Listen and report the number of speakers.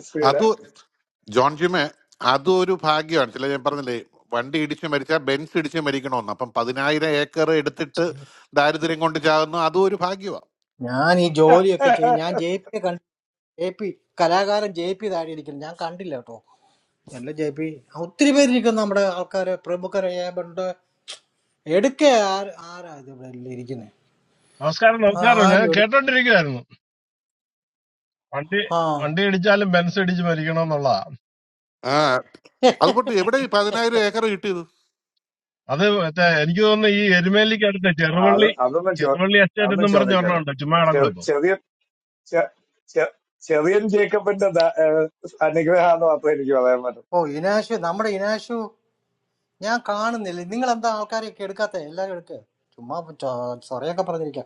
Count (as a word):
four